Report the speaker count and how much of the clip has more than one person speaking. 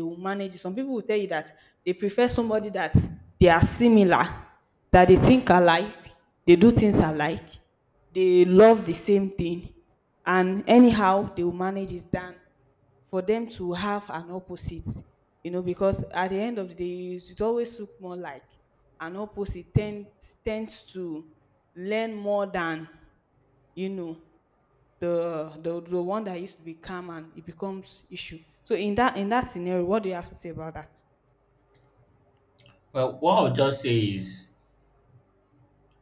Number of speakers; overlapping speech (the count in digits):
2, no overlap